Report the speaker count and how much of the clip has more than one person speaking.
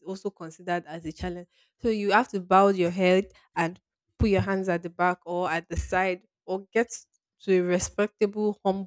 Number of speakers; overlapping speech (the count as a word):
one, no overlap